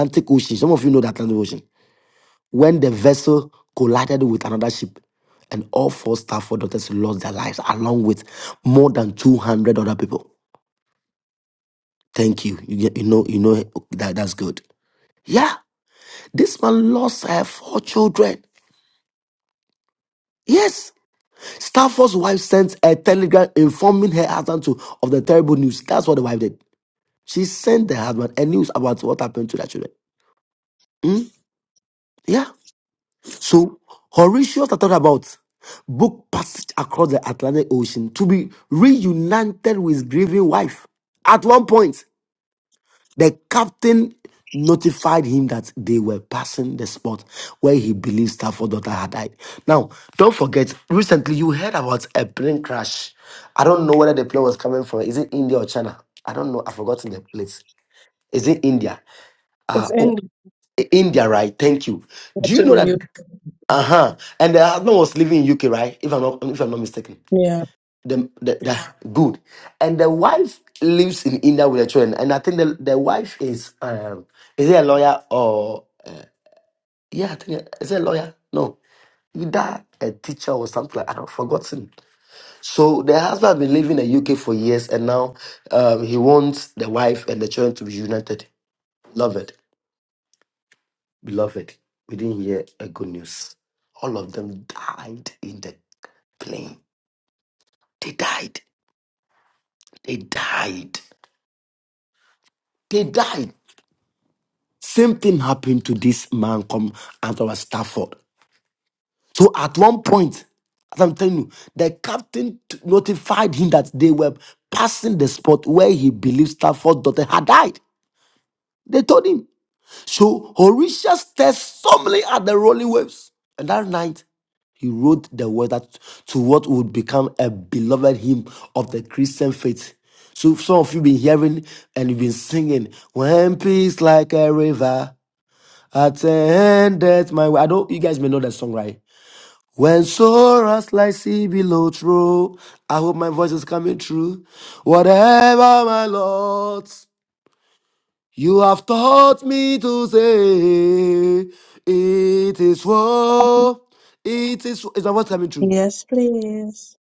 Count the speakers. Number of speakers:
2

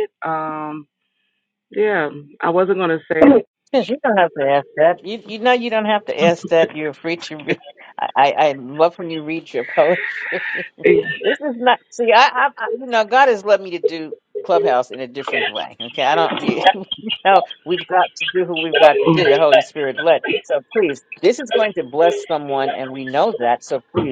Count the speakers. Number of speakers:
2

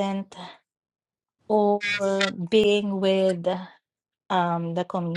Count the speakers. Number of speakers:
1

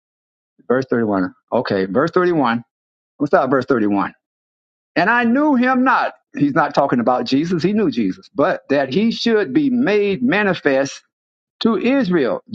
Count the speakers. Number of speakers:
1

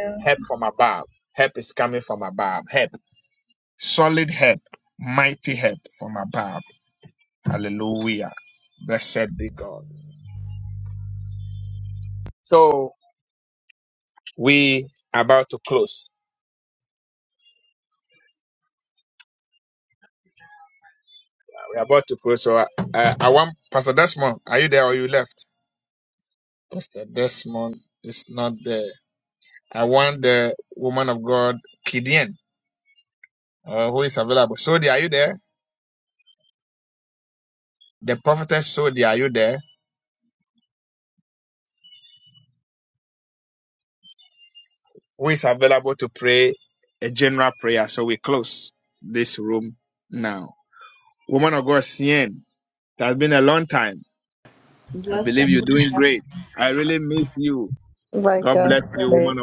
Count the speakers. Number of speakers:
2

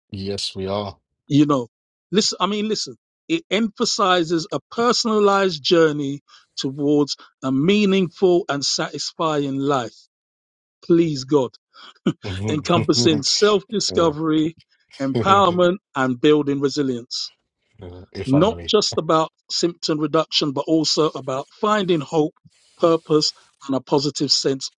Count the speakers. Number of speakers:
2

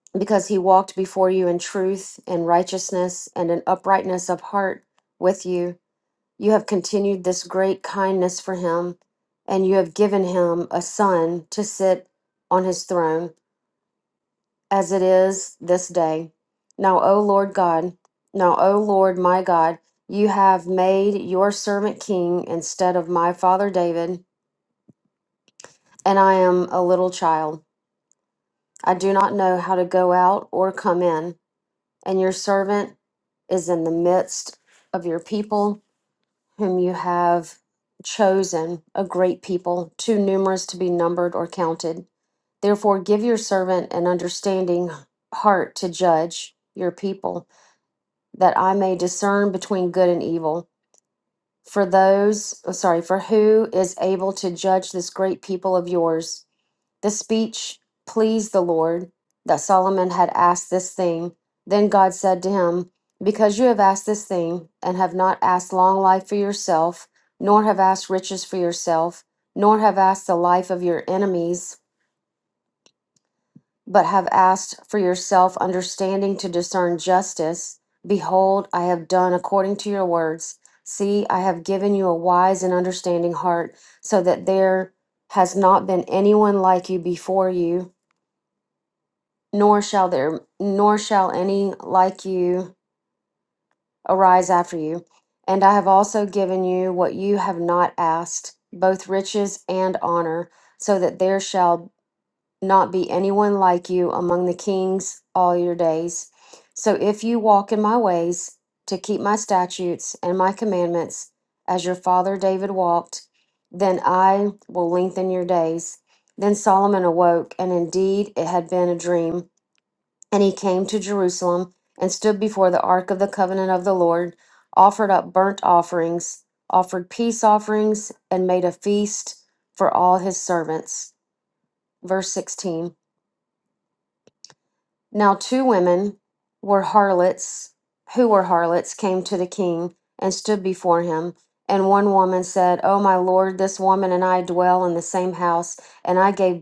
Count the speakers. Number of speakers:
1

